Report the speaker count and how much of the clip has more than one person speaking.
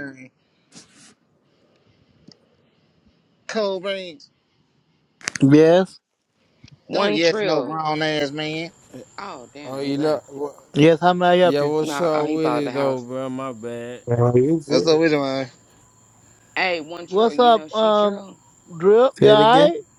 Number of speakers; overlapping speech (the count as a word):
five, about 23%